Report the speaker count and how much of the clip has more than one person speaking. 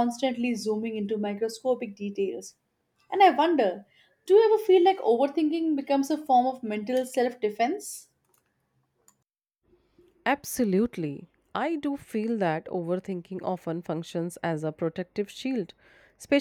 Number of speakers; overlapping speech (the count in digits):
2, no overlap